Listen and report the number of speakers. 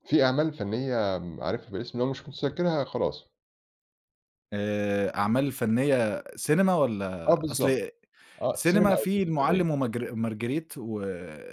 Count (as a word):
two